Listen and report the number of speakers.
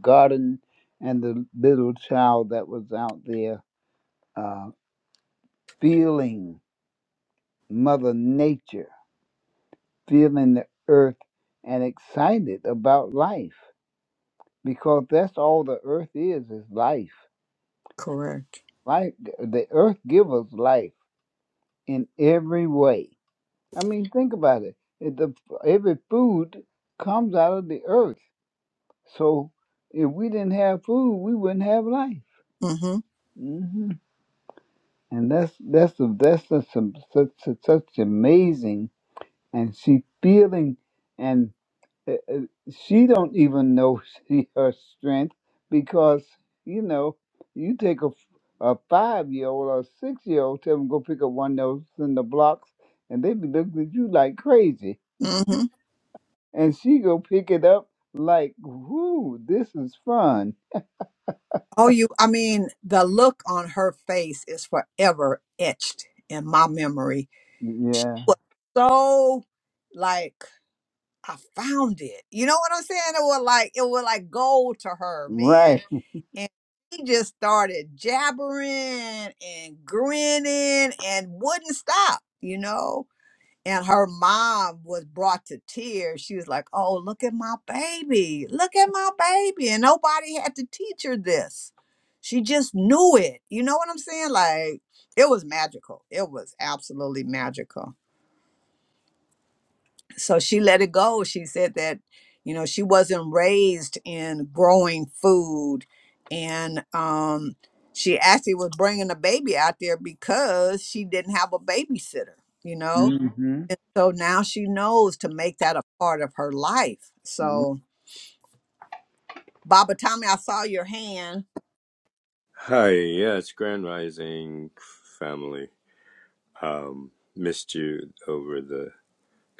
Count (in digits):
3